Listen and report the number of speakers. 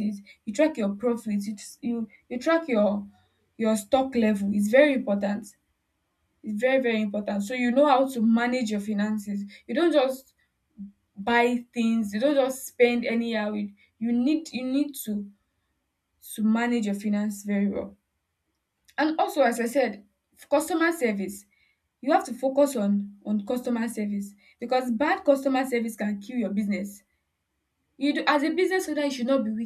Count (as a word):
one